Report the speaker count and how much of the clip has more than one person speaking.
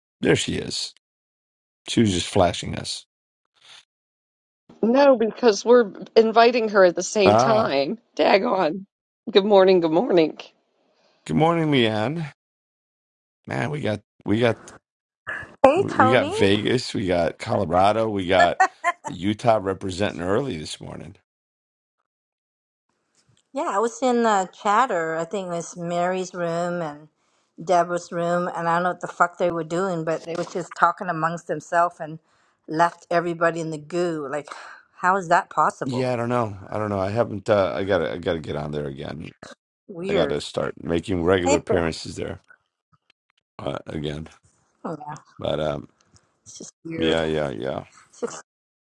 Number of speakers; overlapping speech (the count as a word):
three, about 4%